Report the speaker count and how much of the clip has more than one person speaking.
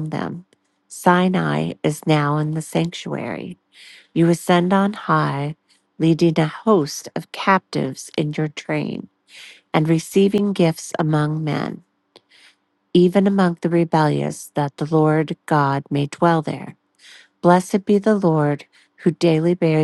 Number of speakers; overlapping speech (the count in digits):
1, no overlap